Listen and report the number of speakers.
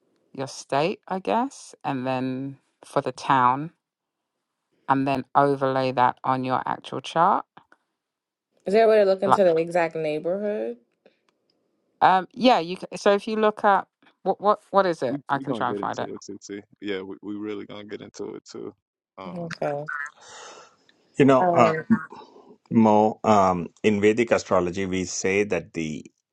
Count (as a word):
four